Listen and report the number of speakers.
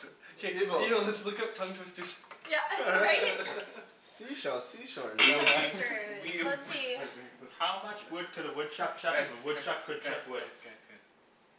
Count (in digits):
4